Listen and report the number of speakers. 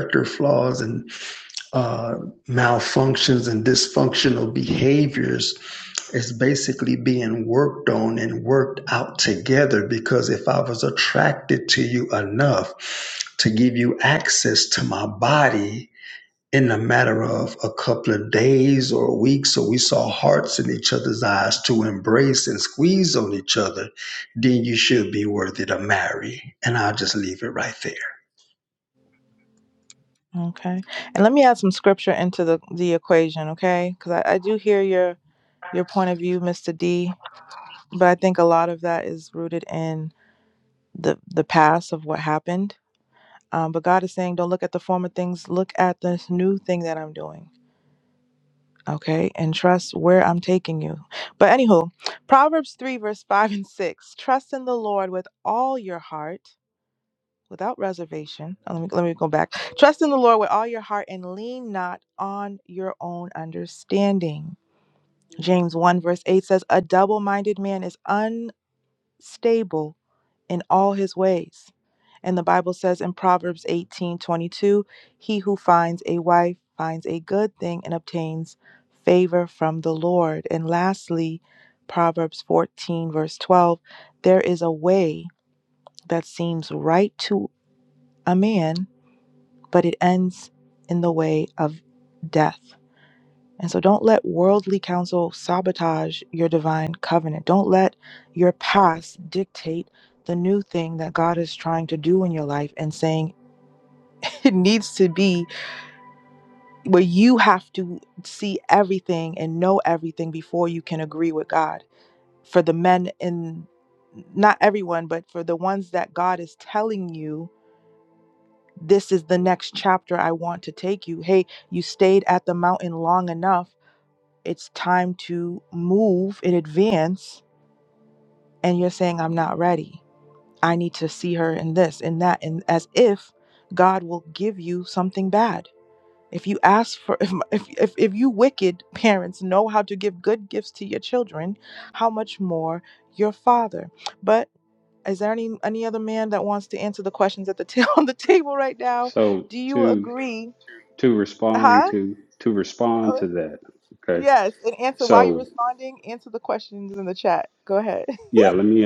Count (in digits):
3